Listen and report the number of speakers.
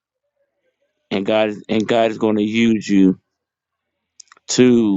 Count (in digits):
1